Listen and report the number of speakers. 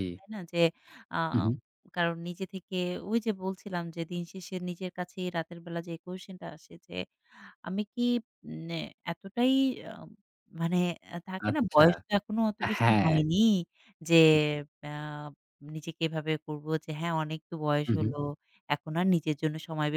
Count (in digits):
2